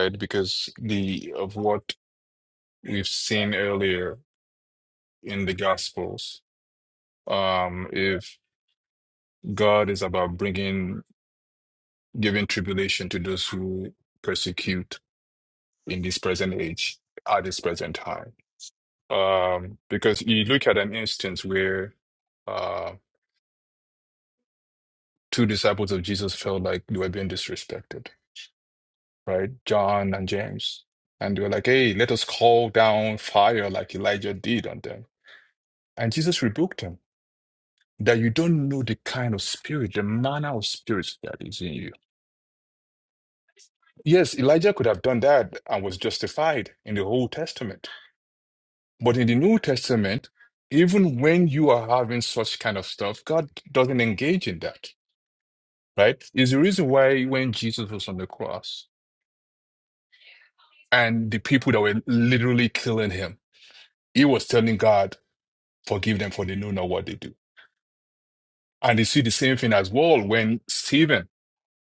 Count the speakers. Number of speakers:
one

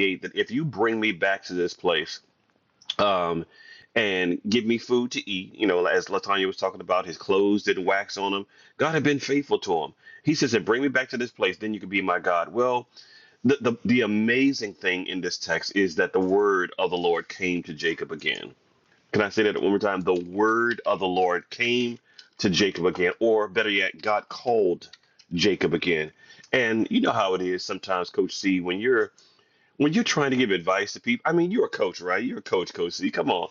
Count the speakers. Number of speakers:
one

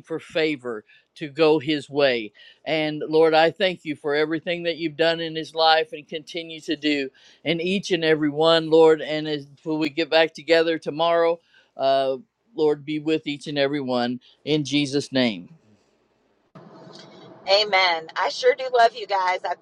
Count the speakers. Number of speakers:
two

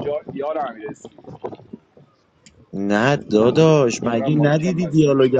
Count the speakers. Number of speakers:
two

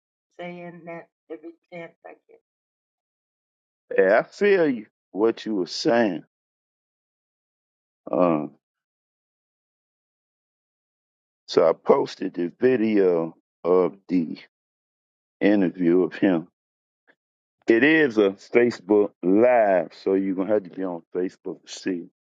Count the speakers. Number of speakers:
two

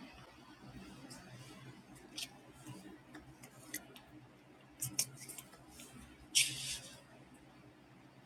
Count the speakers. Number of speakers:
zero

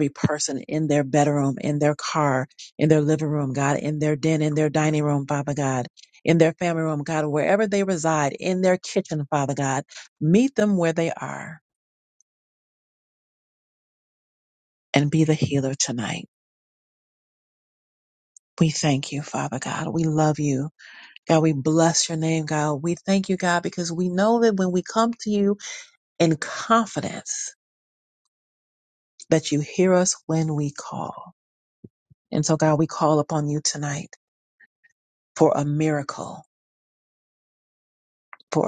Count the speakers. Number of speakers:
one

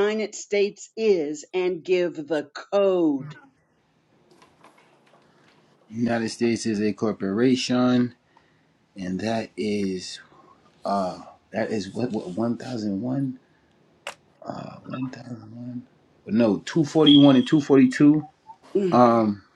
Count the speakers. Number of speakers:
two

